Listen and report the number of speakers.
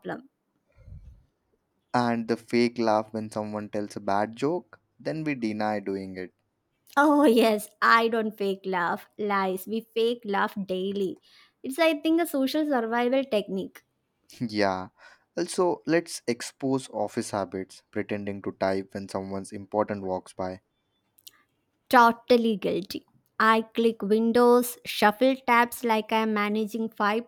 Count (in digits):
2